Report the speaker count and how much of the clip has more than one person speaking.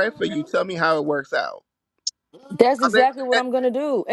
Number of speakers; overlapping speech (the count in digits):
2, about 16%